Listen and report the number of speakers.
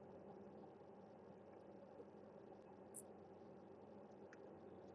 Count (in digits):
0